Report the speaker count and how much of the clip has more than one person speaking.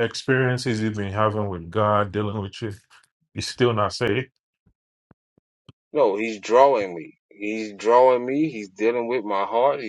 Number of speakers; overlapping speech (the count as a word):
two, no overlap